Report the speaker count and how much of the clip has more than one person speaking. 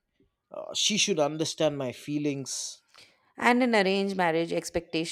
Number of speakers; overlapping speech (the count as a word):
two, no overlap